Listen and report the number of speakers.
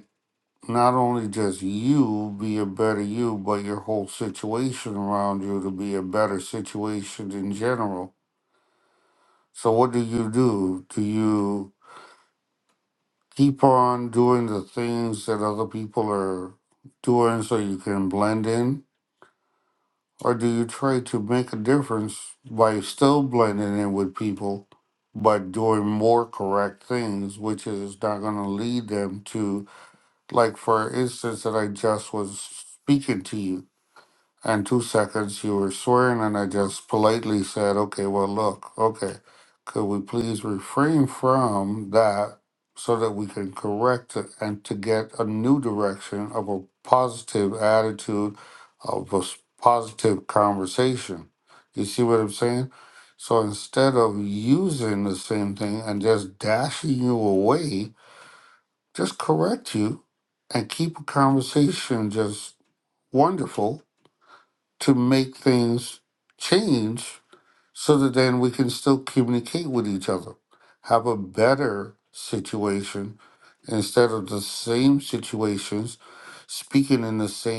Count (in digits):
1